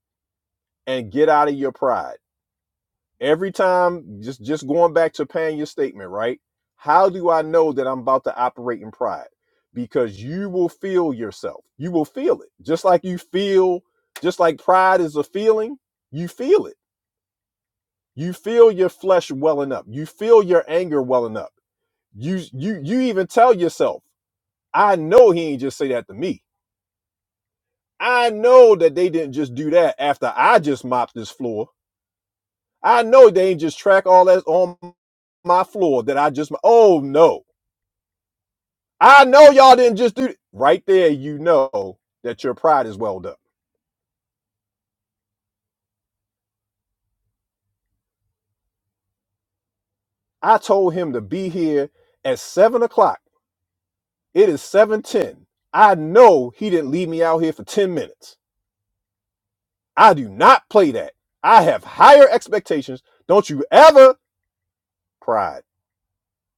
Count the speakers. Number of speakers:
one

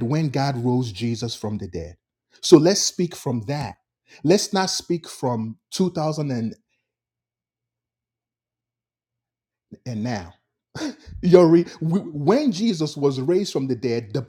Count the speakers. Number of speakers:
one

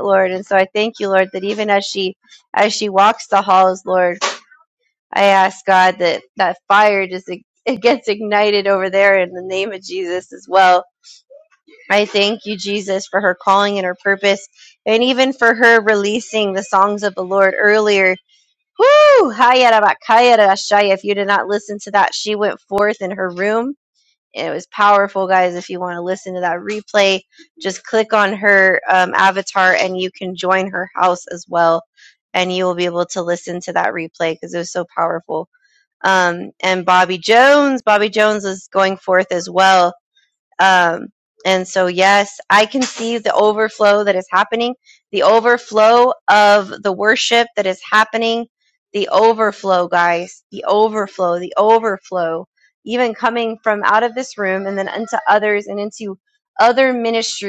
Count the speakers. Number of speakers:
one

